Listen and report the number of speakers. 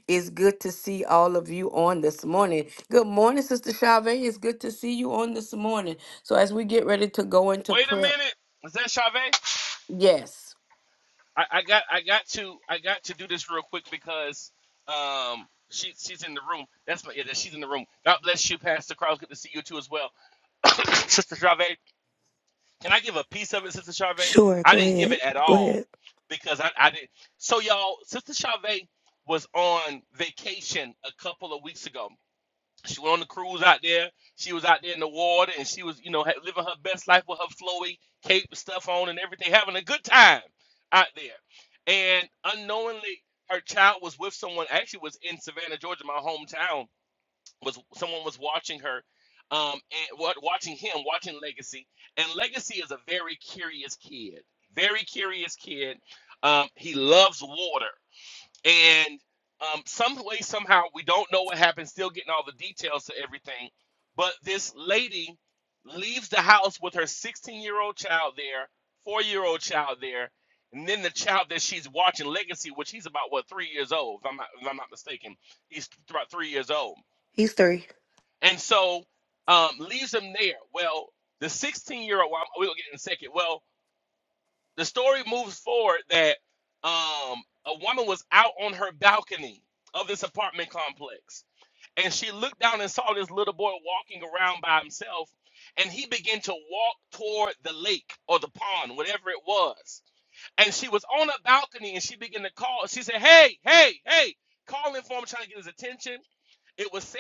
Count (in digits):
3